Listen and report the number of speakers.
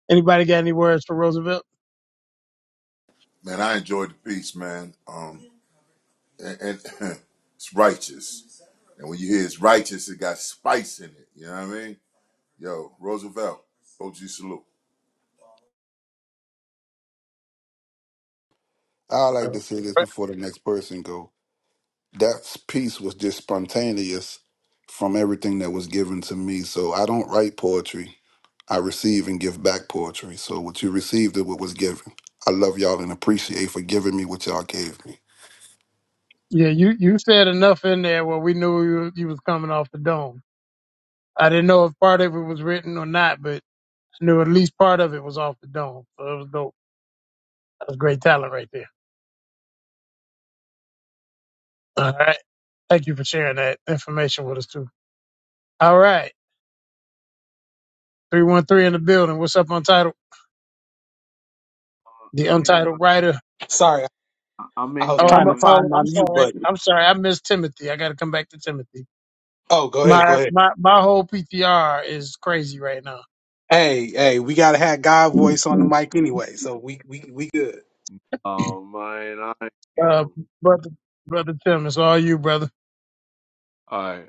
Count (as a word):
five